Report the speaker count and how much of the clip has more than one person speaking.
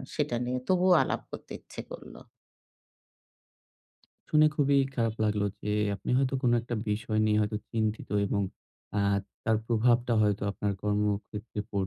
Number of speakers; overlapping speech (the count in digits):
2, no overlap